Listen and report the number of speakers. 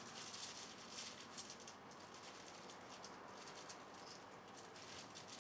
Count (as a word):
zero